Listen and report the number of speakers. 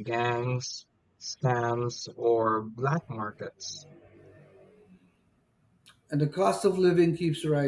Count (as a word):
two